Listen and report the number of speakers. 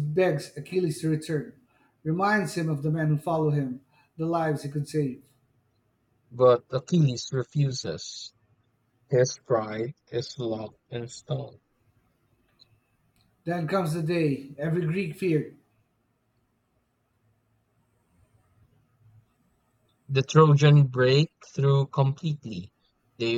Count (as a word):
two